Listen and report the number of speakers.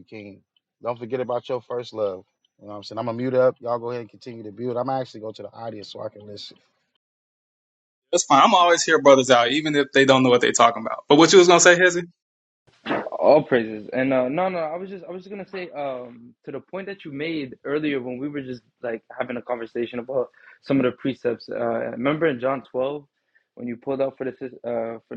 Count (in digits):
3